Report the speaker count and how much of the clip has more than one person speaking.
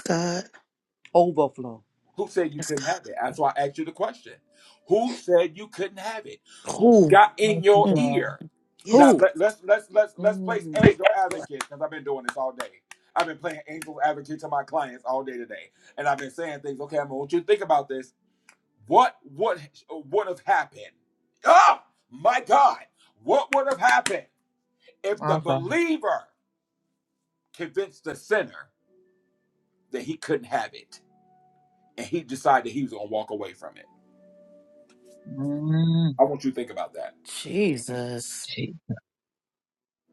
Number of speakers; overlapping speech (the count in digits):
4, about 7%